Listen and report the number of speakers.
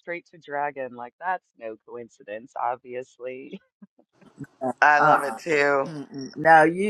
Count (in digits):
3